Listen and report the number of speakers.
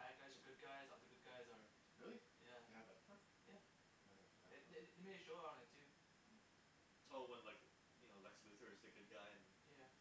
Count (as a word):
three